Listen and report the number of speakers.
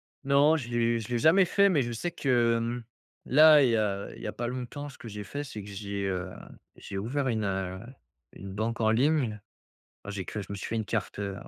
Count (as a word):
one